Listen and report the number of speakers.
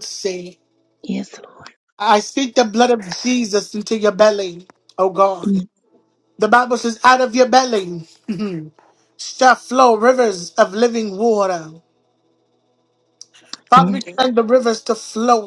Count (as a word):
two